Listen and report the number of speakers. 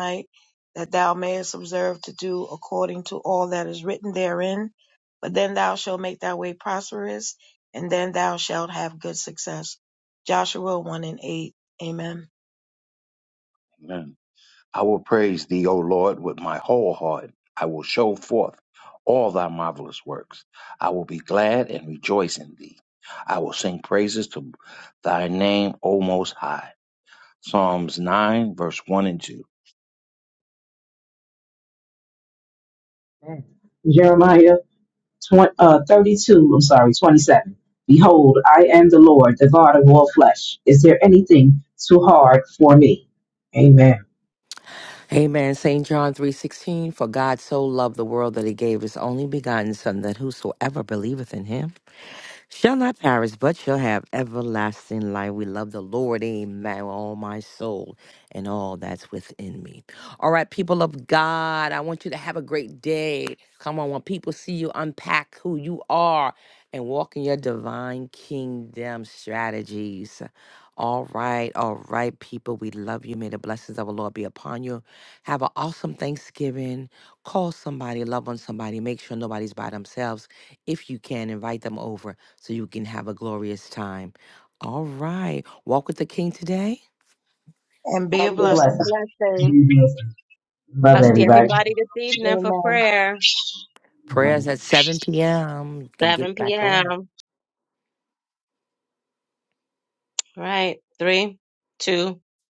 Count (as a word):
five